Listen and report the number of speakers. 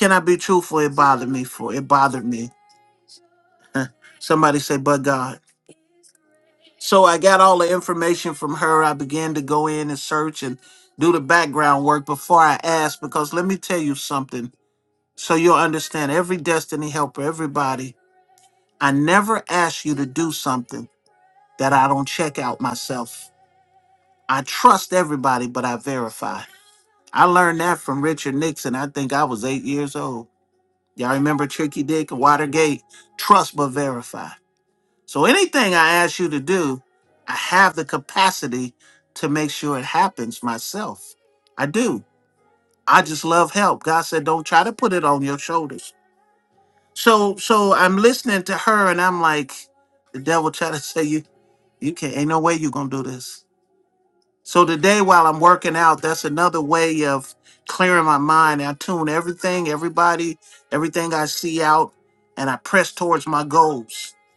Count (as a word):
one